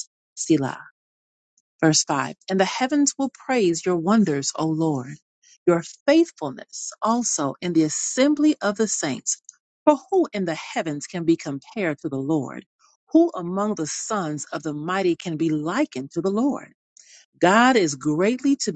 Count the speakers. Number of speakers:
1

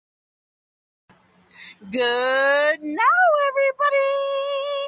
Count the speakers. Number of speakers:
1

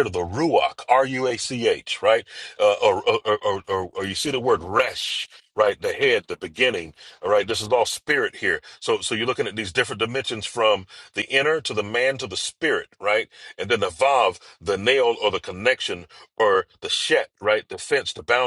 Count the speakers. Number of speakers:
1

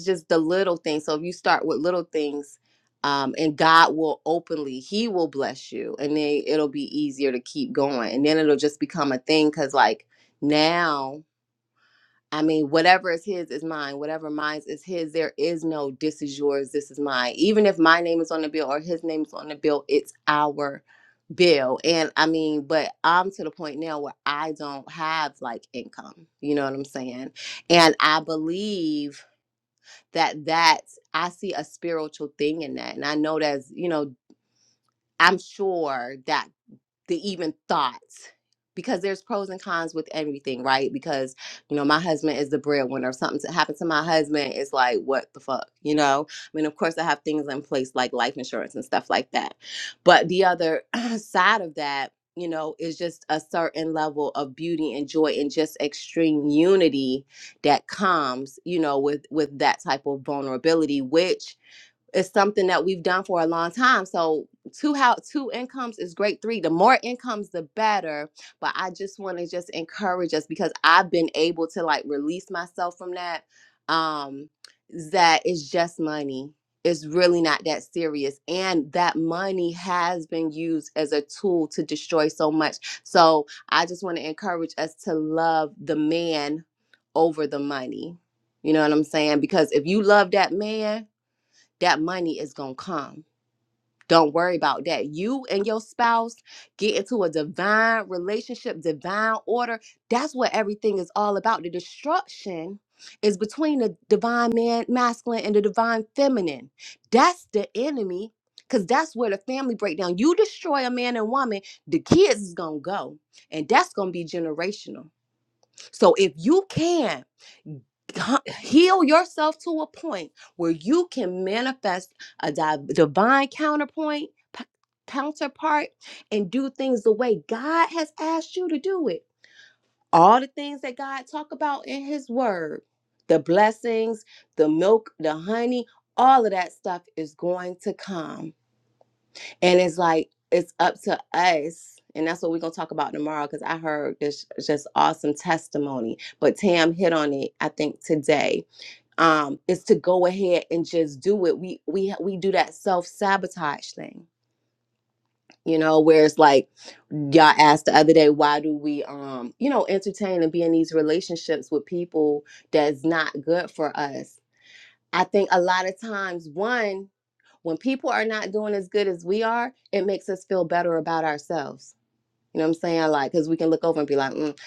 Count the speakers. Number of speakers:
1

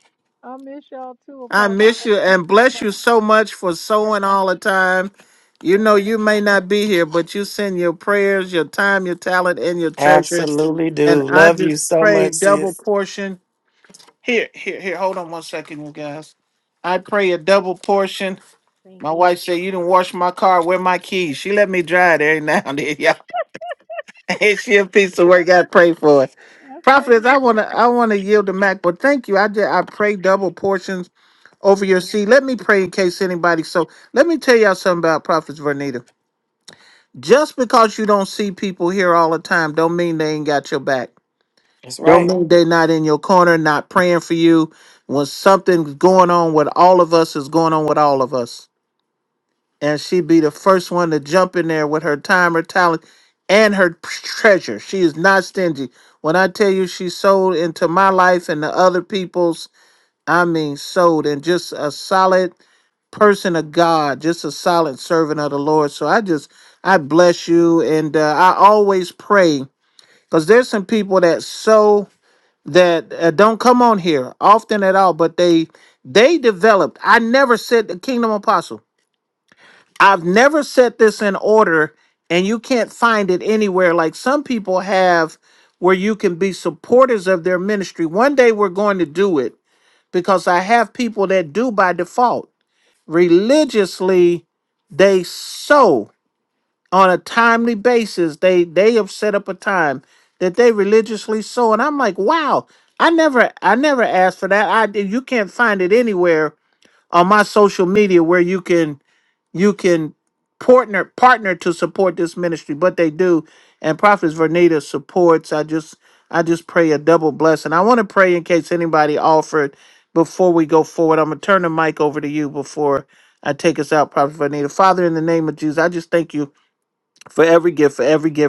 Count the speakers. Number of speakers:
3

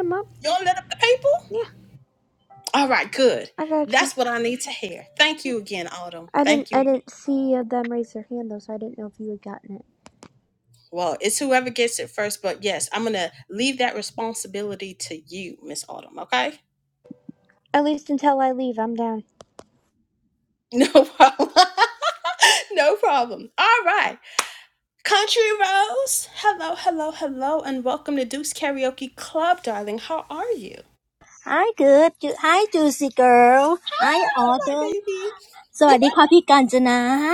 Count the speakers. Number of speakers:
3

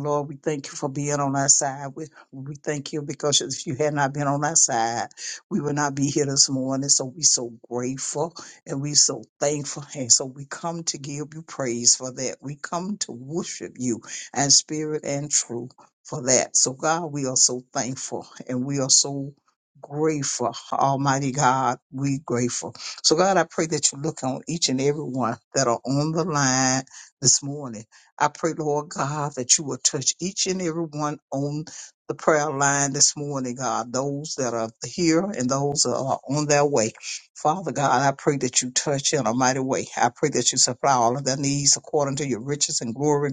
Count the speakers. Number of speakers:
1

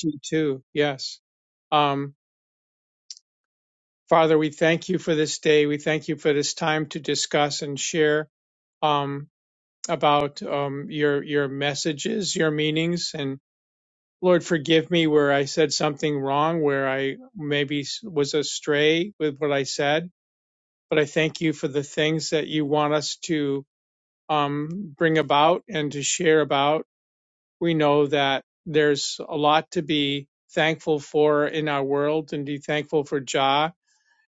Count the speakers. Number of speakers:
1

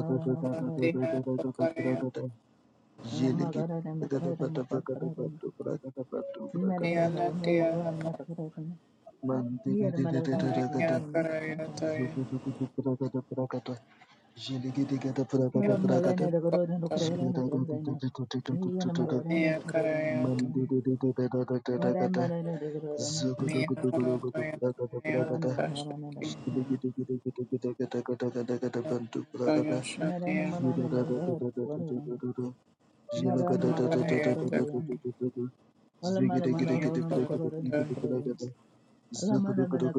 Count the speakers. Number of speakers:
3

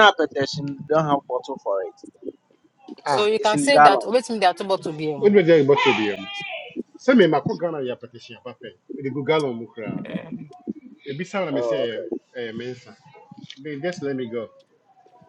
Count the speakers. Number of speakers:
3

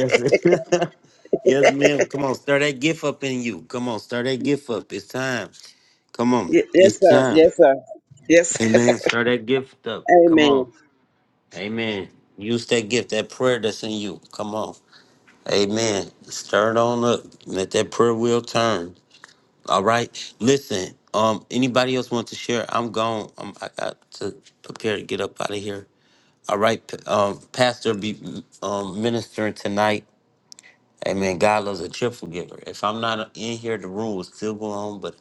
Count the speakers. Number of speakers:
2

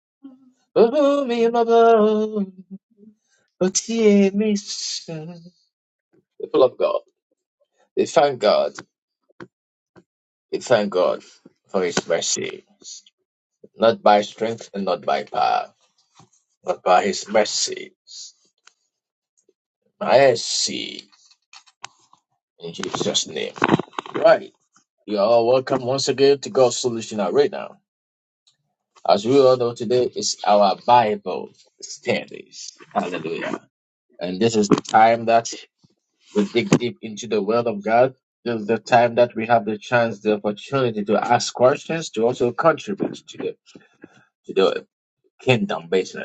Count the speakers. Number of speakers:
1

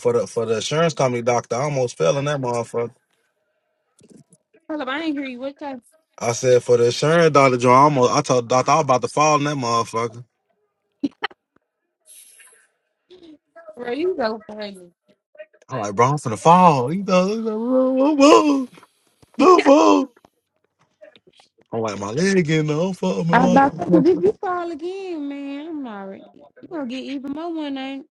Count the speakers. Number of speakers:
2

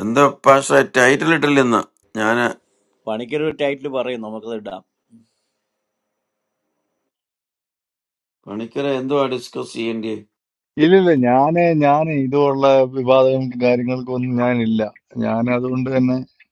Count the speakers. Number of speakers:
3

